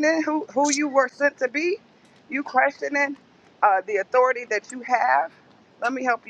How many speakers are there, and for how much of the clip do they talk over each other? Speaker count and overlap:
1, no overlap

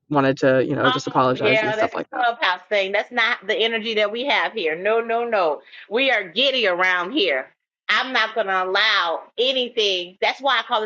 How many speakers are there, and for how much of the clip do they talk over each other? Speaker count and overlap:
2, about 13%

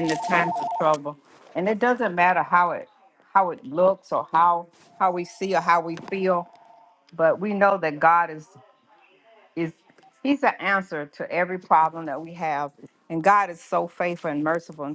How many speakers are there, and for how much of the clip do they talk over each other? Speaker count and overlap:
1, no overlap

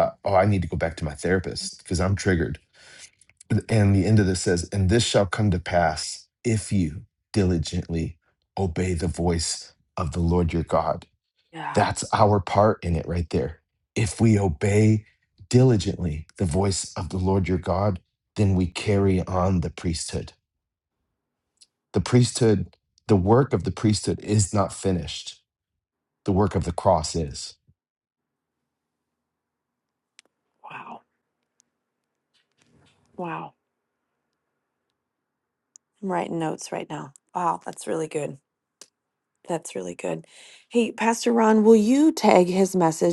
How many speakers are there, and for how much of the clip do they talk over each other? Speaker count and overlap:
2, under 1%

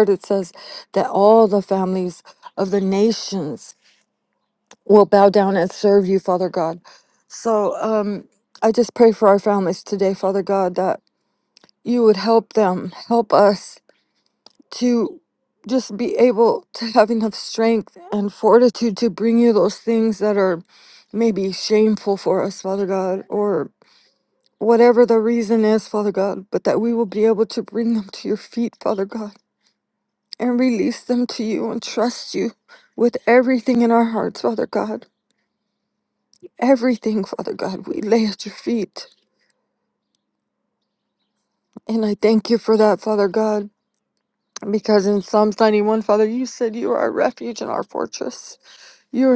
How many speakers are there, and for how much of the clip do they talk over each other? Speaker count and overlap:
1, no overlap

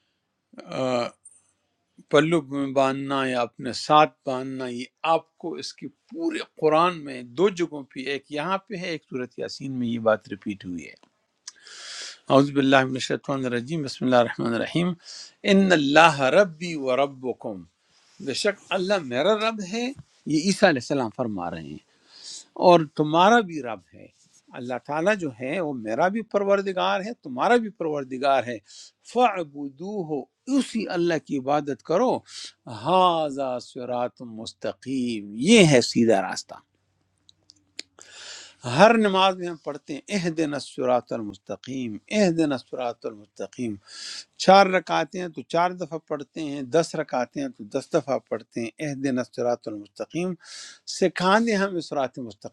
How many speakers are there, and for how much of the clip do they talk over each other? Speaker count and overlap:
1, no overlap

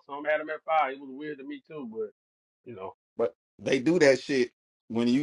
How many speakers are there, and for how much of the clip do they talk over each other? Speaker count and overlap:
2, no overlap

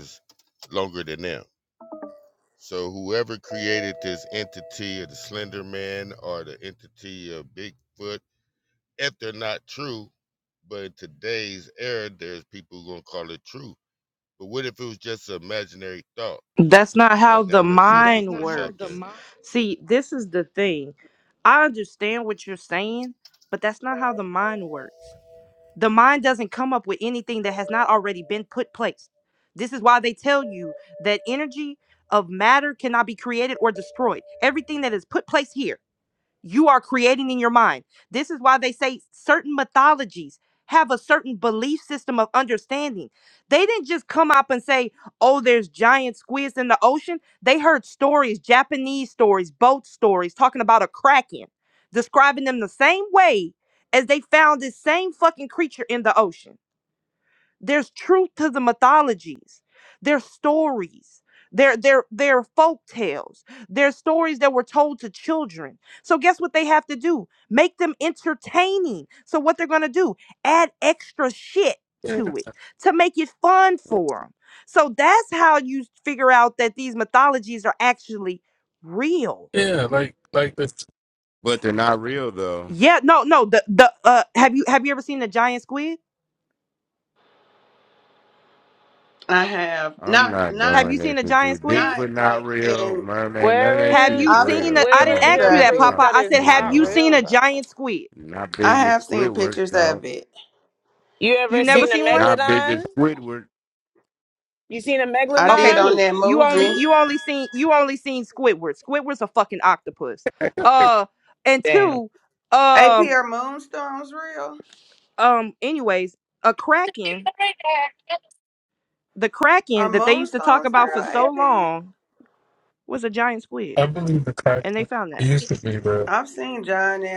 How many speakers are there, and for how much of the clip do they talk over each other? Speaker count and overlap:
6, about 13%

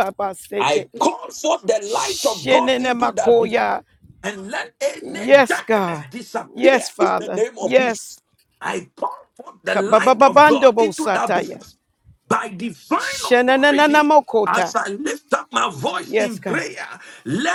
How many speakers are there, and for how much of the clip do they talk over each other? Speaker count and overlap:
2, about 46%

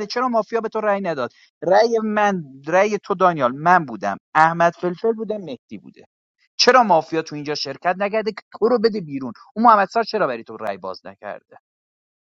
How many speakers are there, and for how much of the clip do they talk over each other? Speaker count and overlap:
1, no overlap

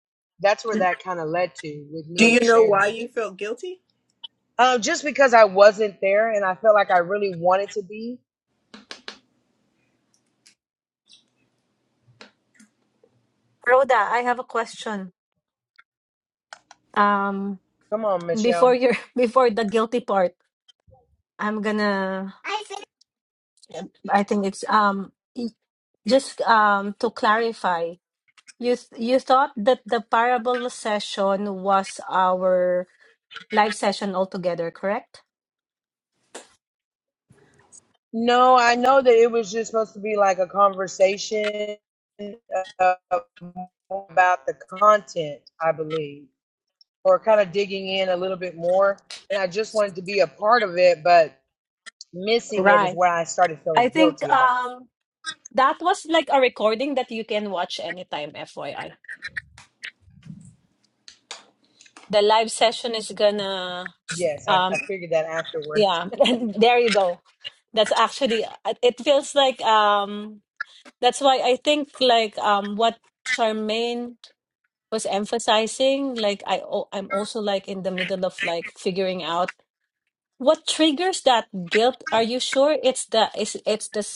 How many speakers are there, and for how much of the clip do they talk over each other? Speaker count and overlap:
3, about 3%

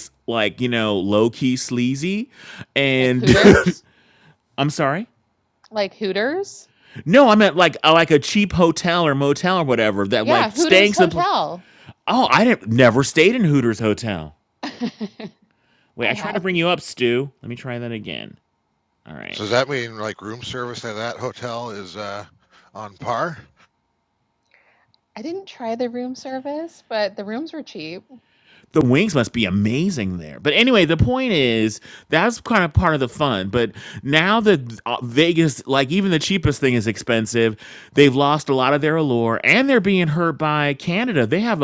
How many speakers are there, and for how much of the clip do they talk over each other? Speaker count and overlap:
3, about 4%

